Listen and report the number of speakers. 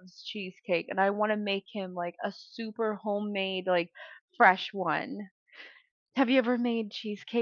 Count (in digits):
1